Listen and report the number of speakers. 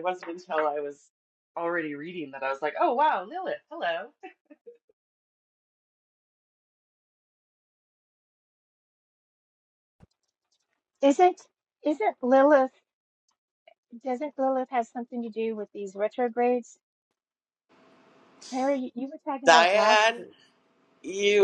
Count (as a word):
three